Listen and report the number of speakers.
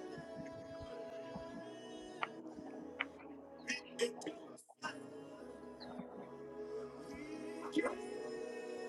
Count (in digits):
0